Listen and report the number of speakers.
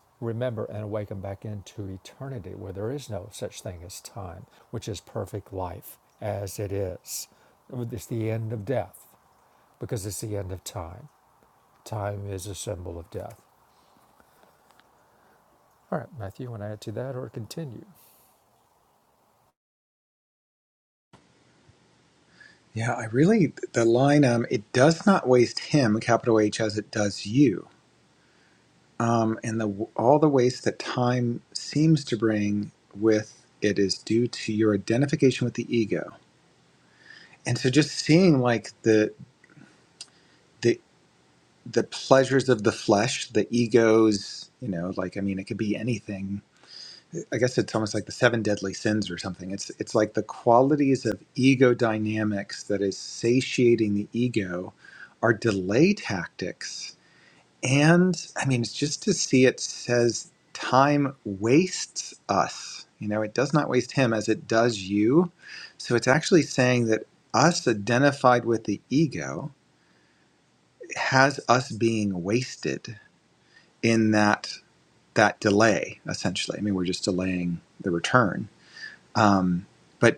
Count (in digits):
2